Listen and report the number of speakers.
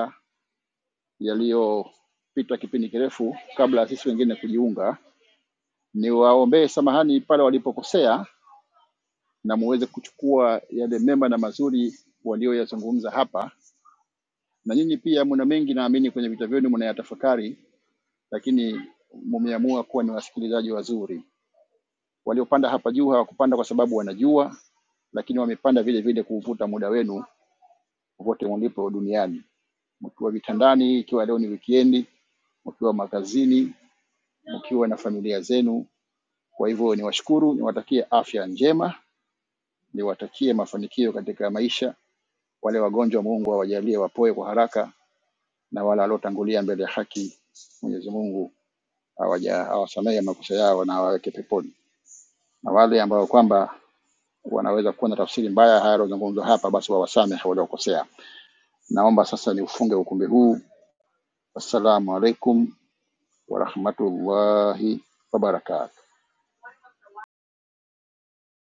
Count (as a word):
one